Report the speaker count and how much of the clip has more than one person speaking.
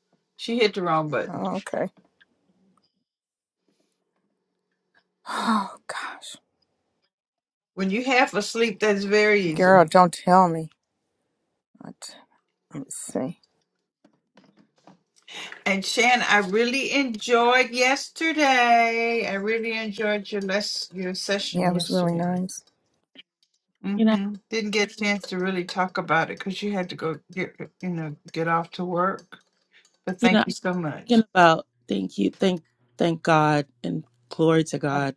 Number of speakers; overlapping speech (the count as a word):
three, about 5%